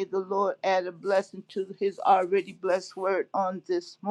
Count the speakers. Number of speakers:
1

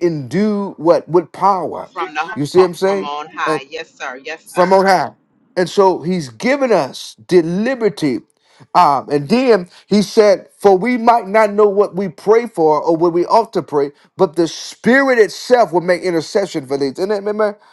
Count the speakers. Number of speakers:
2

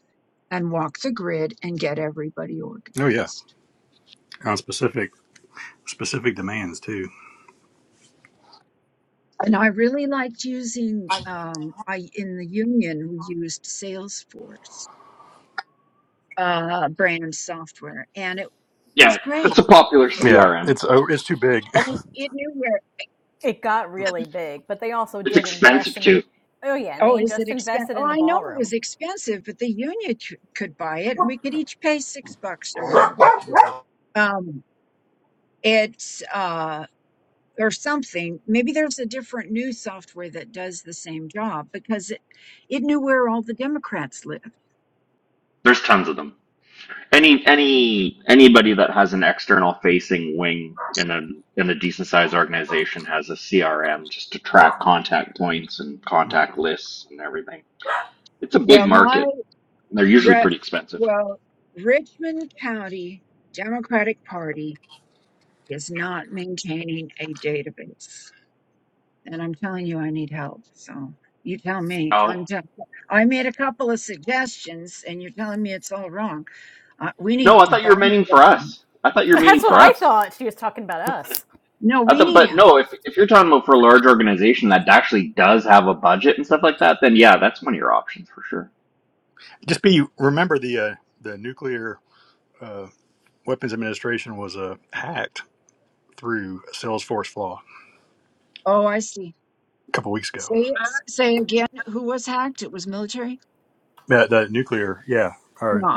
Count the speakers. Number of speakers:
4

